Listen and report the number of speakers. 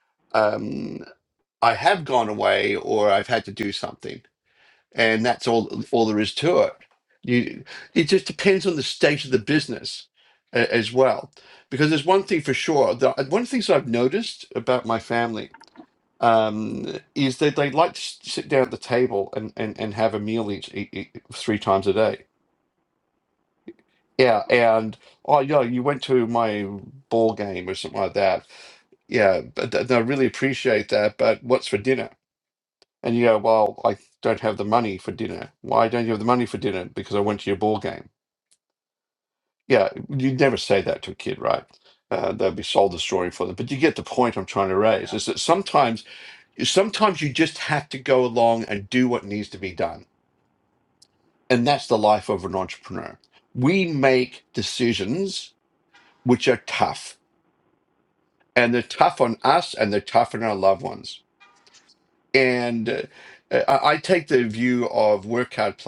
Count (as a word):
one